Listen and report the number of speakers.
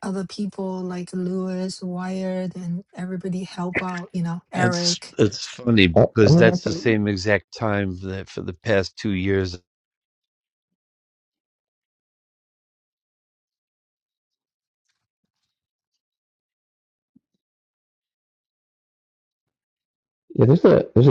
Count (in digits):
3